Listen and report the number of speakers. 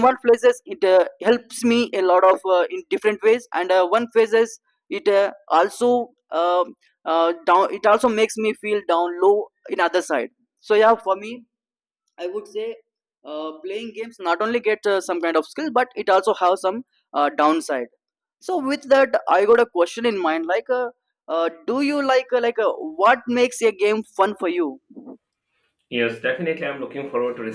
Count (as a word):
two